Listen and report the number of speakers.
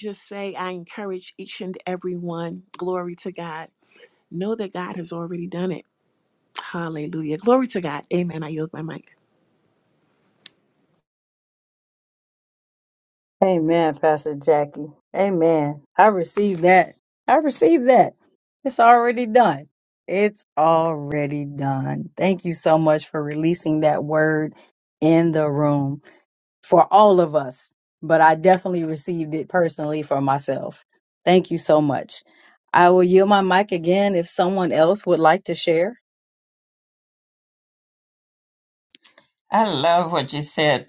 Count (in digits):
3